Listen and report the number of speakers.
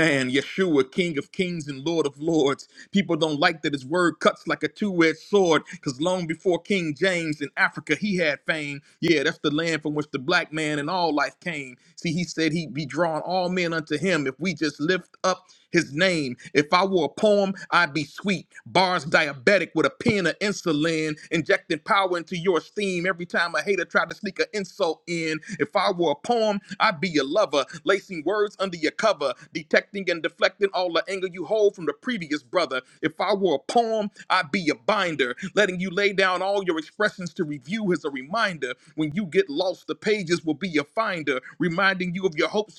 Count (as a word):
one